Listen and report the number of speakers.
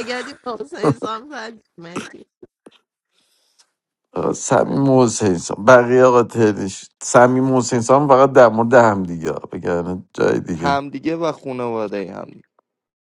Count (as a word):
three